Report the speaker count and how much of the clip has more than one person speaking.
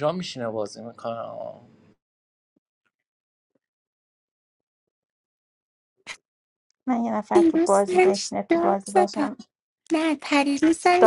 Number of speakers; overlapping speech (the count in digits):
3, about 18%